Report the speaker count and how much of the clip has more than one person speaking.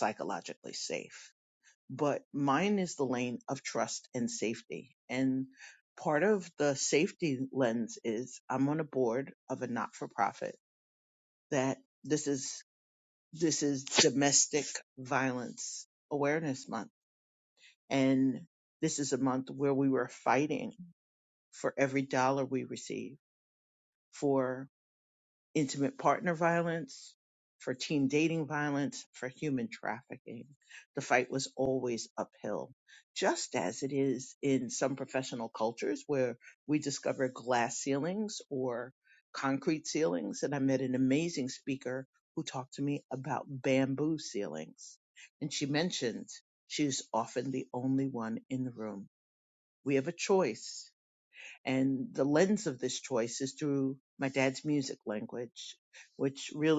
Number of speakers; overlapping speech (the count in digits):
1, no overlap